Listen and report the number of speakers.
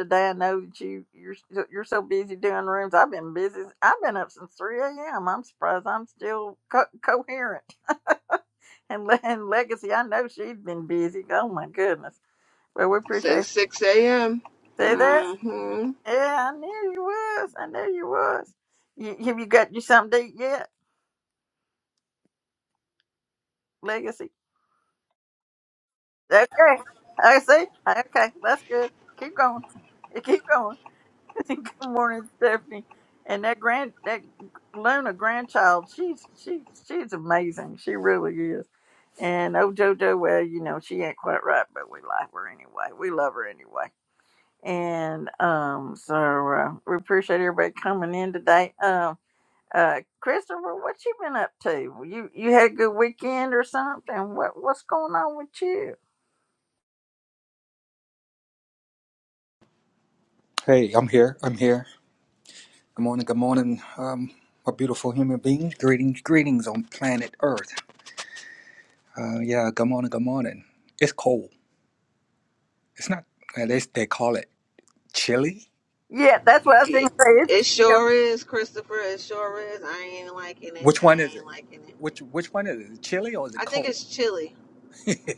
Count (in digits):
3